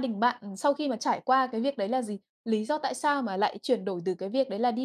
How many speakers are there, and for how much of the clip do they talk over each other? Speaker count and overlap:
1, no overlap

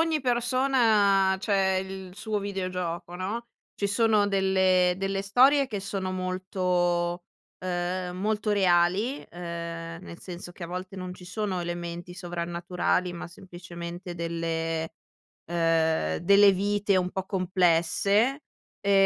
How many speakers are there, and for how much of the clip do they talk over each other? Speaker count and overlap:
1, no overlap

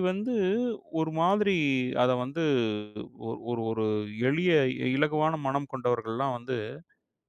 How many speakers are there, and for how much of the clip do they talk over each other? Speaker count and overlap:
1, no overlap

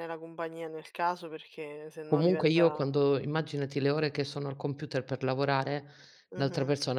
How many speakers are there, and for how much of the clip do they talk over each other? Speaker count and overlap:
2, about 15%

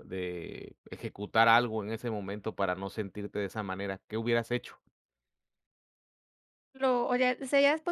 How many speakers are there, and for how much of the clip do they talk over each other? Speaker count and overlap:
2, no overlap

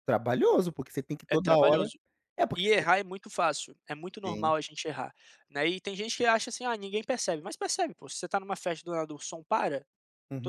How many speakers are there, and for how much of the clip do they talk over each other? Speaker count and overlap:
2, about 11%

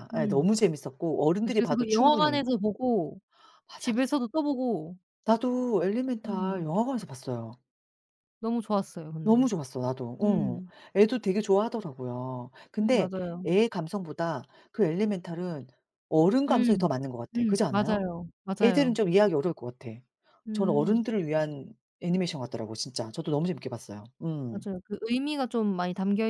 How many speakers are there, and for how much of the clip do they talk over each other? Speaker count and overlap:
2, about 18%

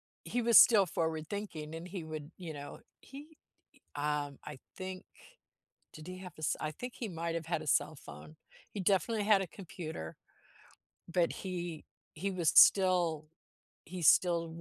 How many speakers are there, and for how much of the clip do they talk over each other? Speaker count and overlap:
1, no overlap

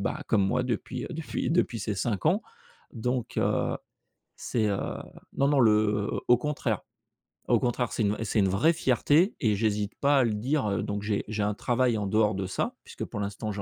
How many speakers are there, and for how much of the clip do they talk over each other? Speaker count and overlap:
1, no overlap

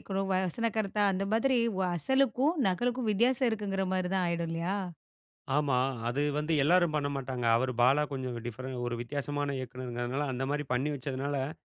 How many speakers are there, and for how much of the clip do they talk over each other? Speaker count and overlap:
2, no overlap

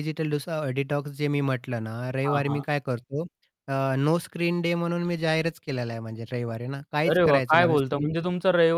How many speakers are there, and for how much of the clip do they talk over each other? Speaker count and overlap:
2, about 19%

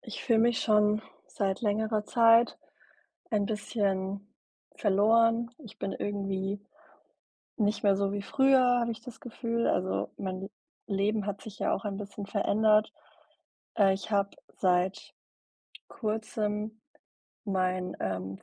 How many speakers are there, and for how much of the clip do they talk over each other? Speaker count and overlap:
1, no overlap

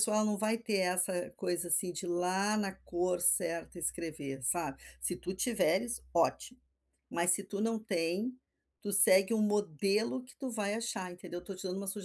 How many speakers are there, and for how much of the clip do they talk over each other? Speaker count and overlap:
1, no overlap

